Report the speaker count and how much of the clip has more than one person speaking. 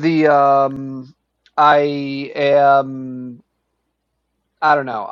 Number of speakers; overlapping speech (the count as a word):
one, no overlap